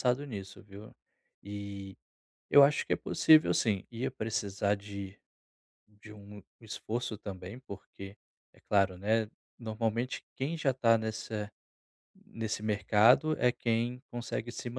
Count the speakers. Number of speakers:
1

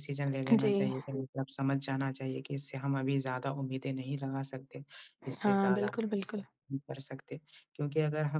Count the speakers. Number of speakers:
2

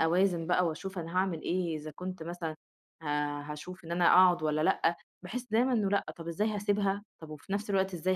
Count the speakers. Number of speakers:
1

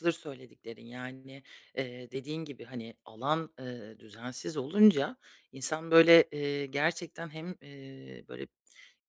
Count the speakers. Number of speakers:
1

